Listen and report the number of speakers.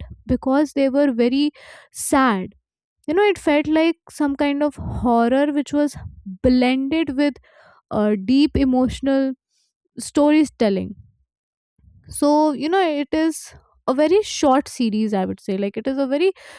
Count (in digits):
1